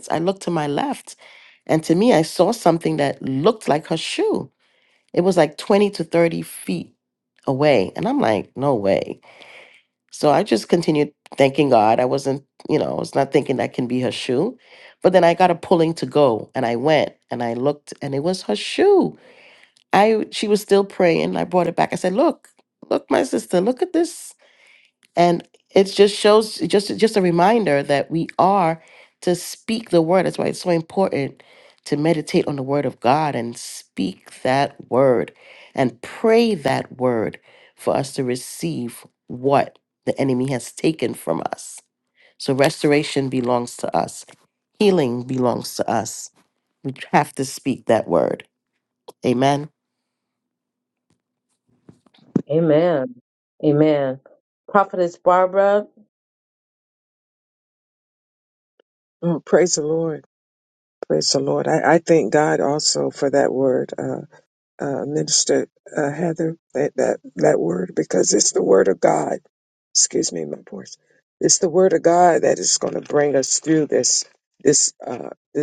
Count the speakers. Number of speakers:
3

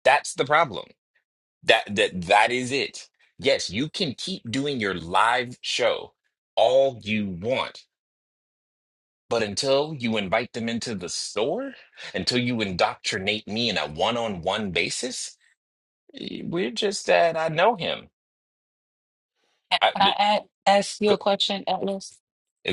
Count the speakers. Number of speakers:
2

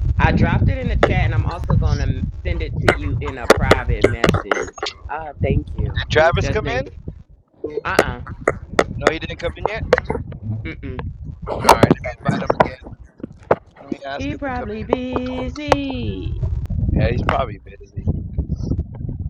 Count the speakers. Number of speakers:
3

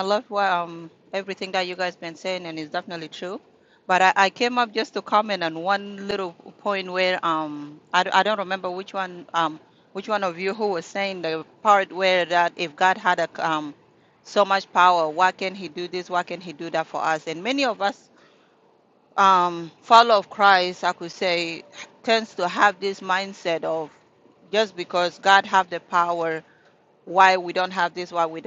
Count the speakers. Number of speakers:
1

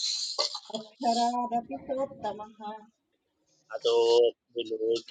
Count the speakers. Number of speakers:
2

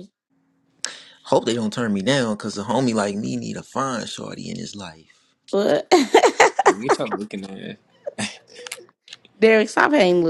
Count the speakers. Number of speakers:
3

